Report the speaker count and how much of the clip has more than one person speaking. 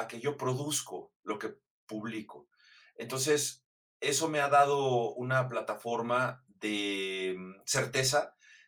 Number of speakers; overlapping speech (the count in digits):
1, no overlap